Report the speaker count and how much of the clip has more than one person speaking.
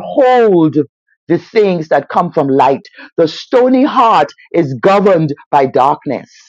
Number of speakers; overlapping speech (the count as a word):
one, no overlap